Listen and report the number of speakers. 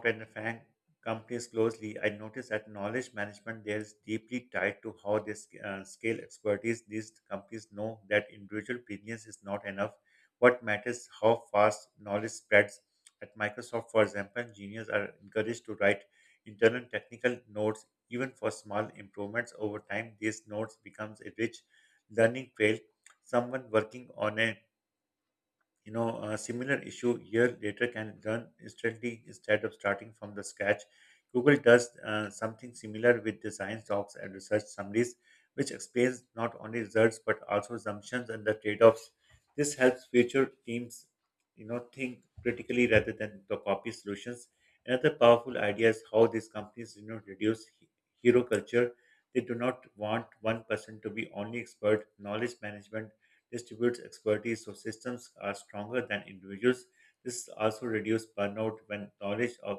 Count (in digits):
1